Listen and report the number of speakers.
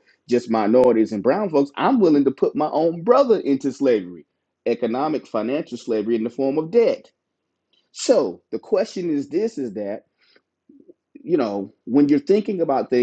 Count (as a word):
one